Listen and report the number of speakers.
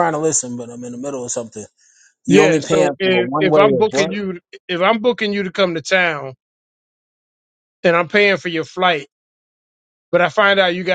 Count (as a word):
two